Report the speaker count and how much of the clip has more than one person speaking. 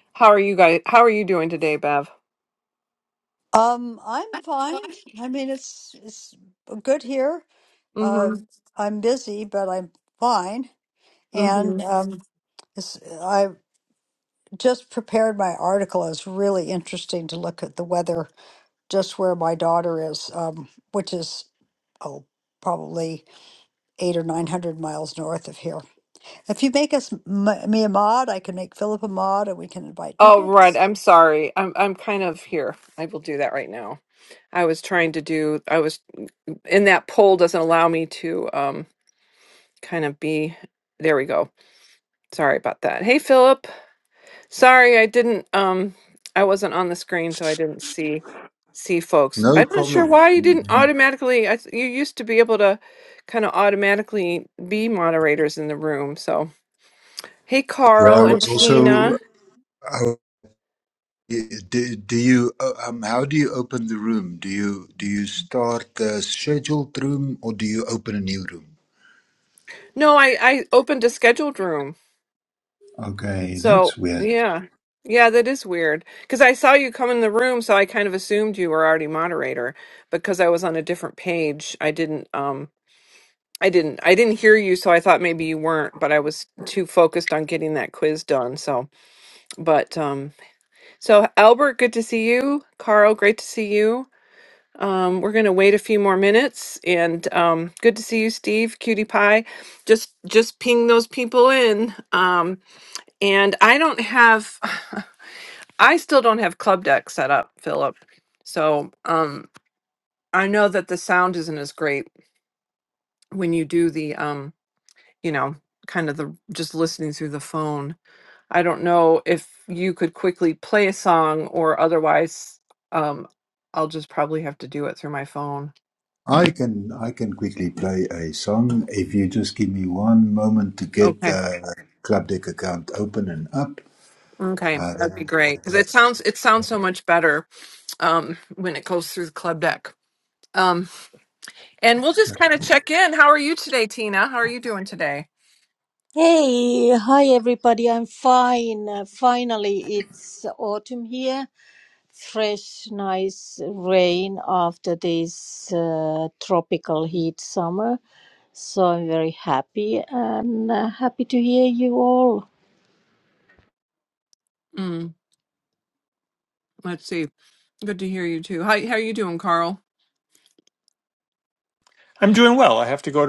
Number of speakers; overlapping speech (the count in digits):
5, about 3%